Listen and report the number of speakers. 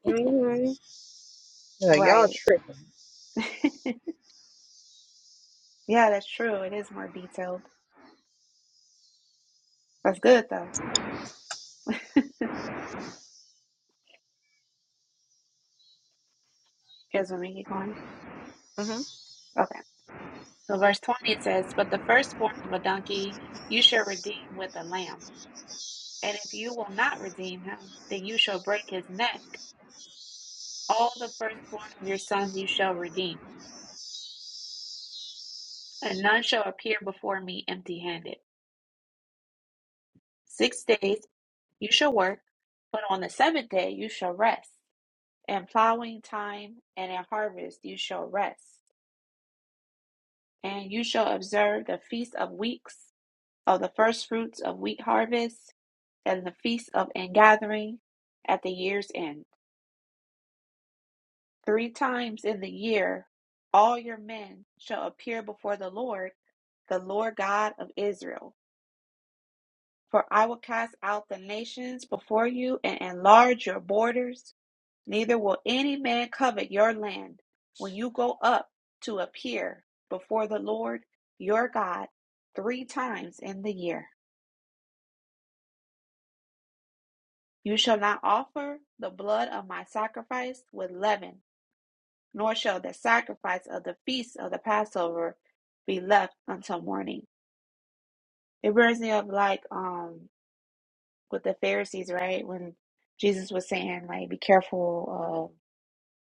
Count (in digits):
2